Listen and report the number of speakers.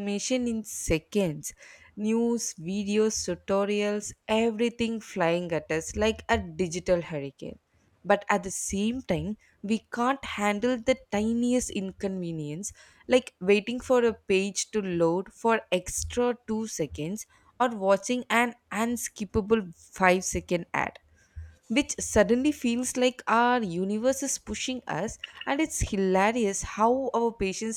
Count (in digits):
1